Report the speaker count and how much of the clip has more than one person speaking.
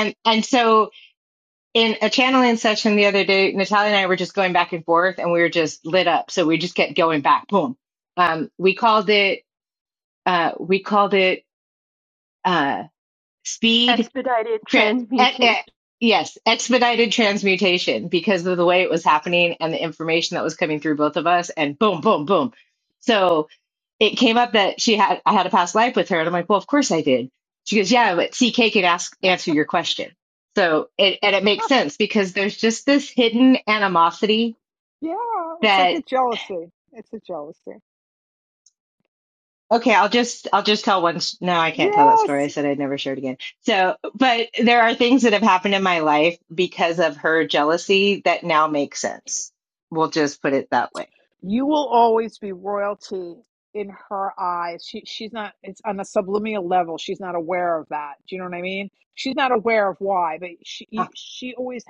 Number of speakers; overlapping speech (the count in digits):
3, about 4%